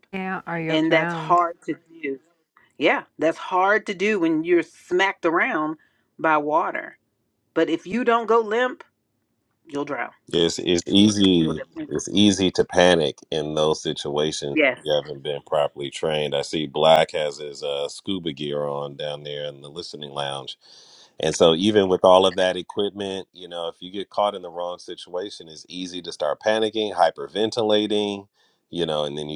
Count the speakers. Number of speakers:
three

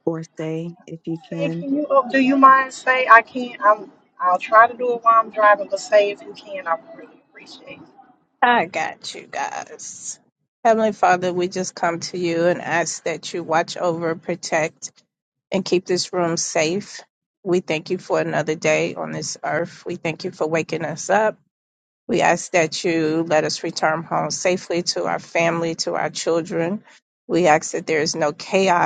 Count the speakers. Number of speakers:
three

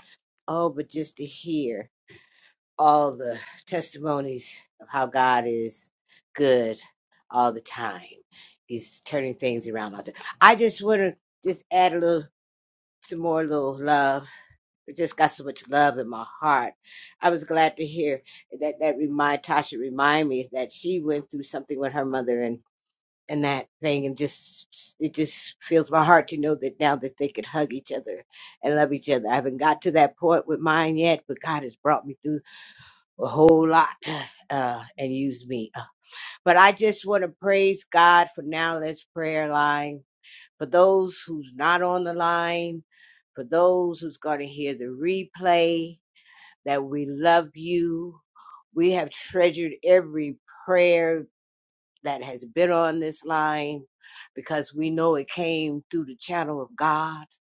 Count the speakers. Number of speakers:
one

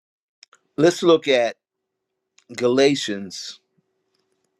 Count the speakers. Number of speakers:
one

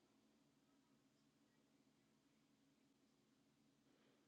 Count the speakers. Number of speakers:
zero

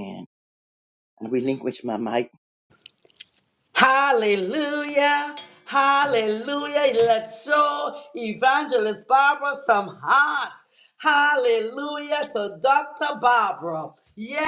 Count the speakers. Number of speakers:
two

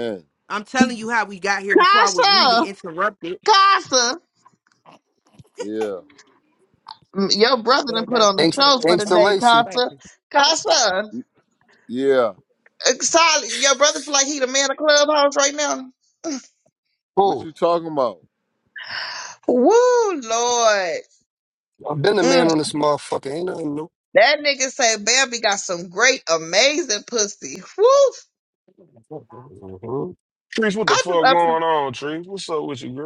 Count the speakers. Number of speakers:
five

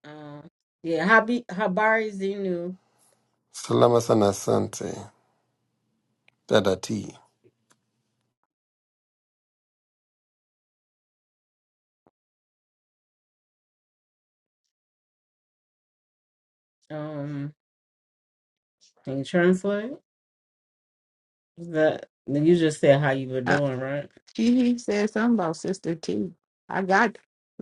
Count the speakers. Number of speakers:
three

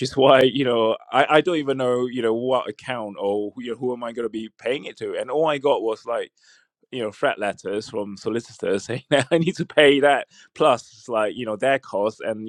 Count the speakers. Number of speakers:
one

